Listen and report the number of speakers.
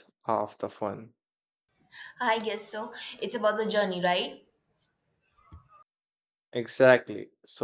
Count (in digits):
2